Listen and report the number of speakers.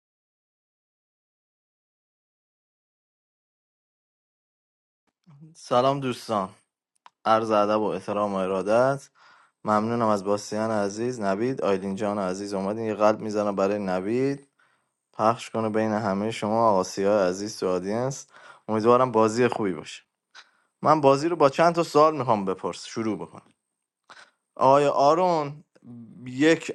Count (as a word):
one